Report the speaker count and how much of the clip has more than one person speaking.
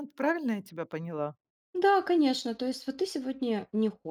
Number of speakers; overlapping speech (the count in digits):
2, no overlap